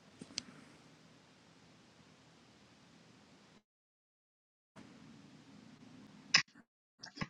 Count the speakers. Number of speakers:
0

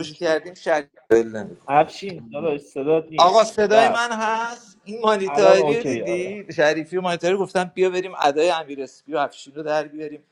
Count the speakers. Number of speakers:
2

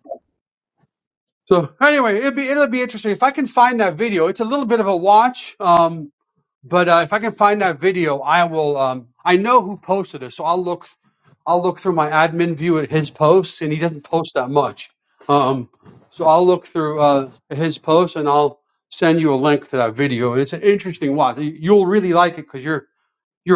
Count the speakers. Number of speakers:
1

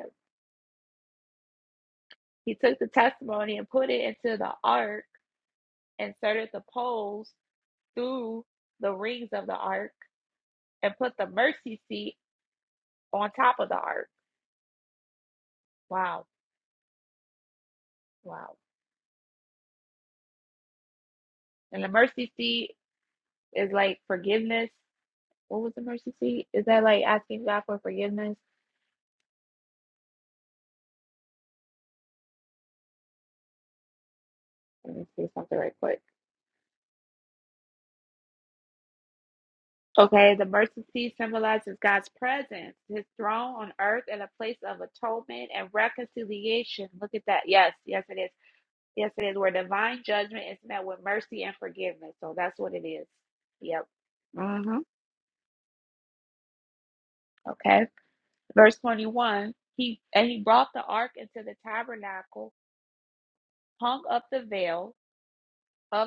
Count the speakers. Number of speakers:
1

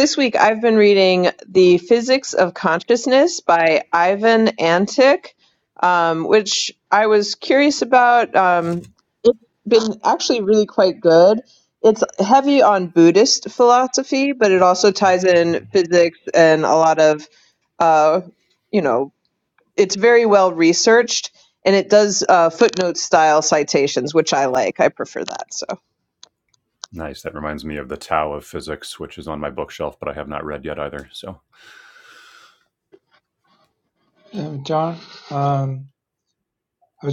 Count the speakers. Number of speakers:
3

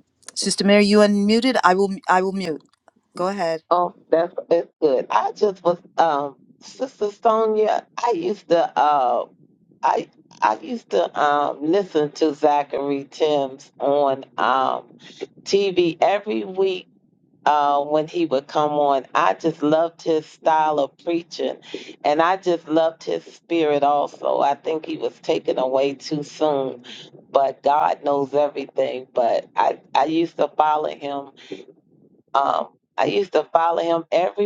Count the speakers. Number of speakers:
2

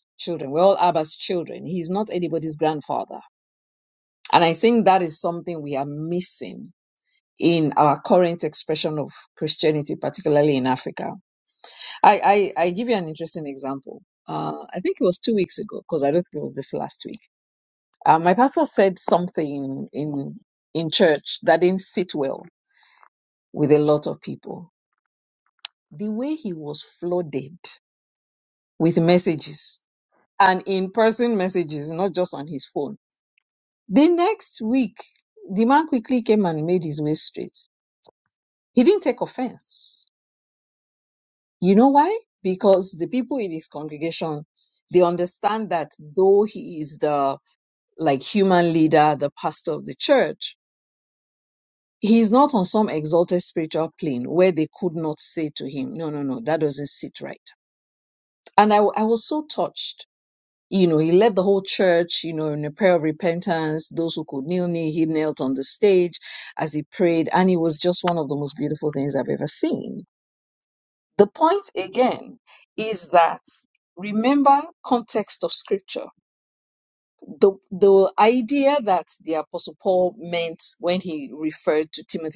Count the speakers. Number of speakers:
1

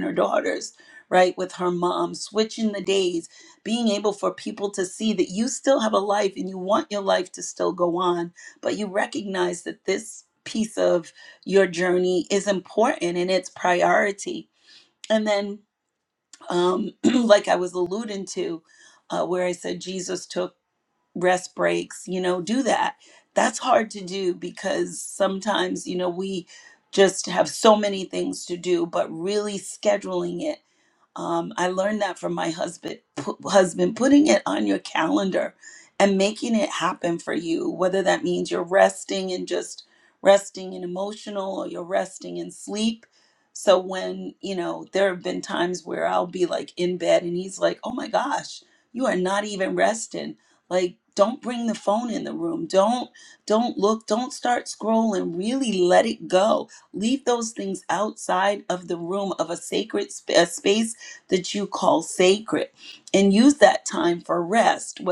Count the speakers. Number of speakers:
1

